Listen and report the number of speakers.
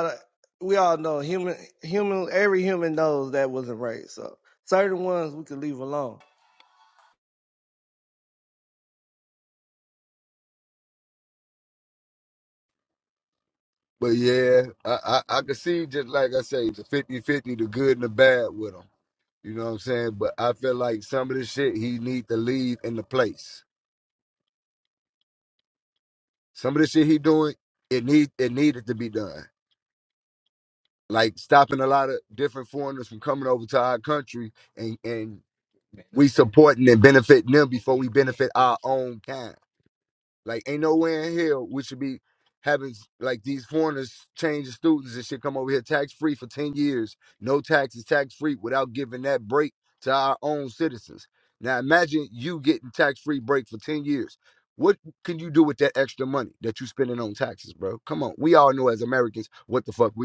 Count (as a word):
two